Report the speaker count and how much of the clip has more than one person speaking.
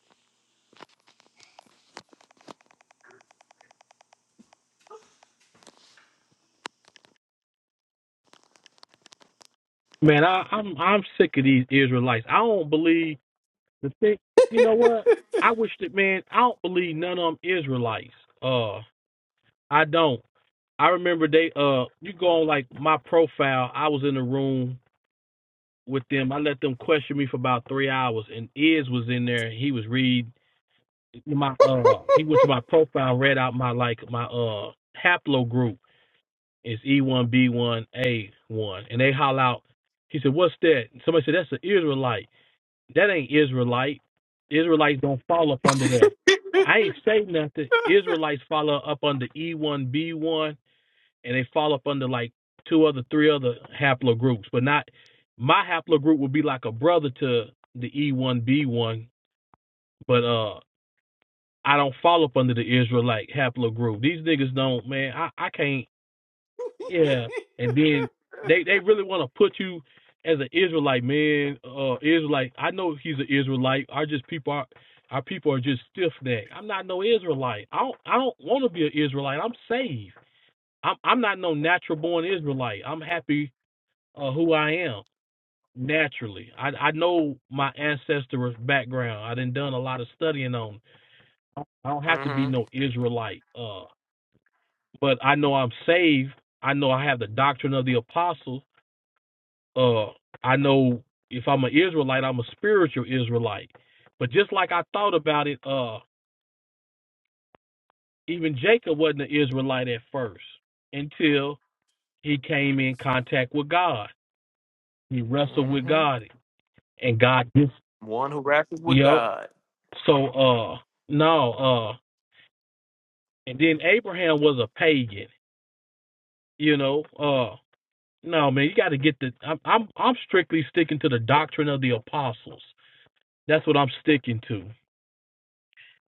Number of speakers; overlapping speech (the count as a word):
two, about 1%